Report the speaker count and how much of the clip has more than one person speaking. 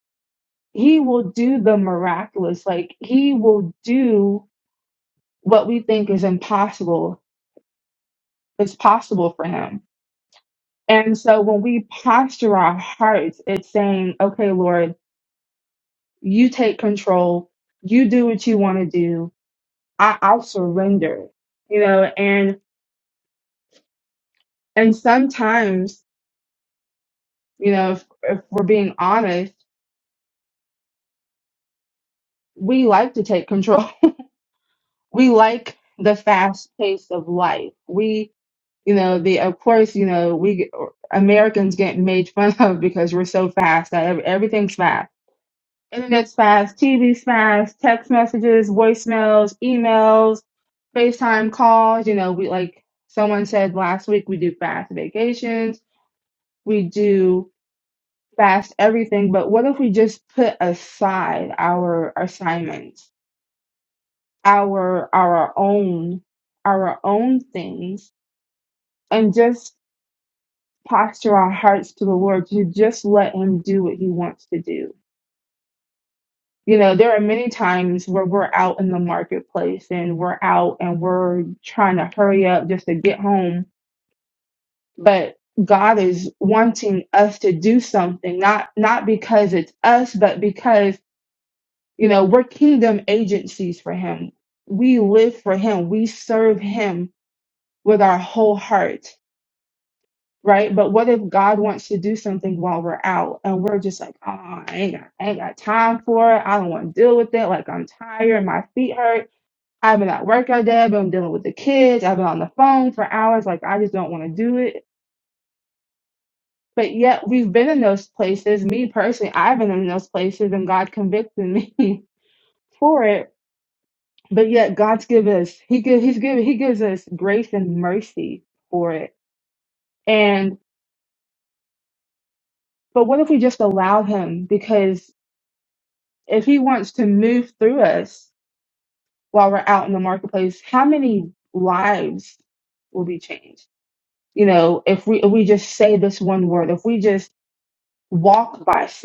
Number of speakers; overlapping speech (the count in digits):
1, no overlap